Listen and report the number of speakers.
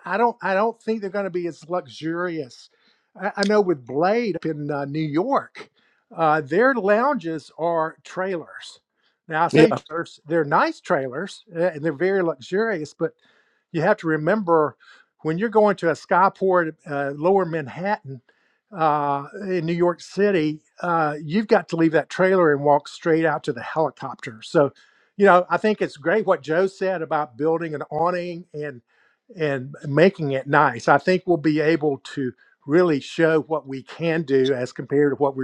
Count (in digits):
1